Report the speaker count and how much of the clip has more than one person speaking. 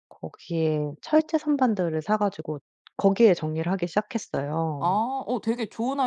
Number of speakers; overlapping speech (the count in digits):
2, about 1%